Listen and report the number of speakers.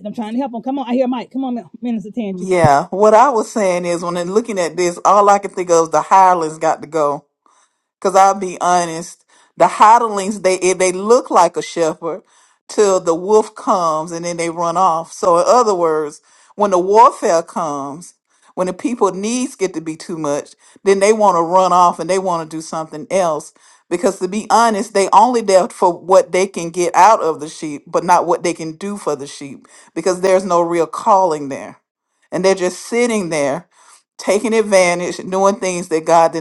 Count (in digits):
2